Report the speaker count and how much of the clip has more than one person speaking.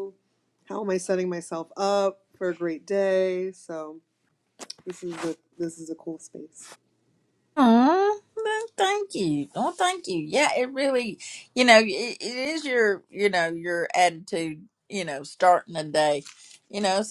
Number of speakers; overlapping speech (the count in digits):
2, no overlap